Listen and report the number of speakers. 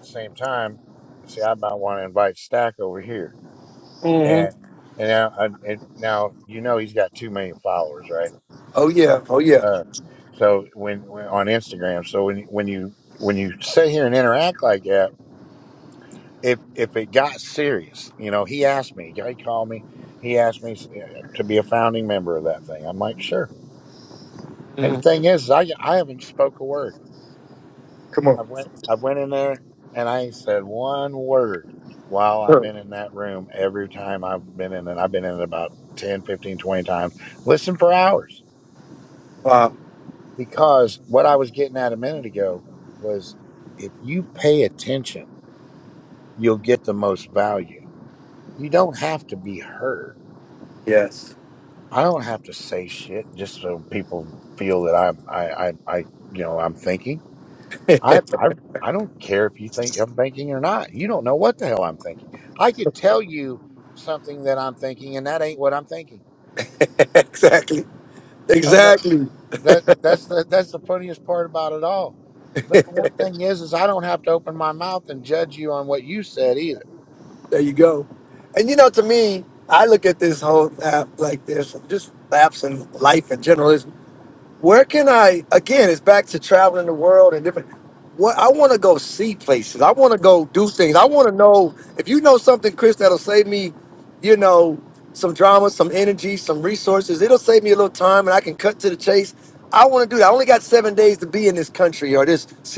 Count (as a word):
two